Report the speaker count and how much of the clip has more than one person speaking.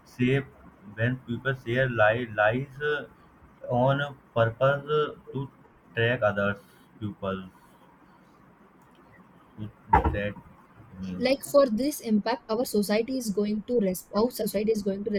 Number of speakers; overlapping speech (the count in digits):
2, about 1%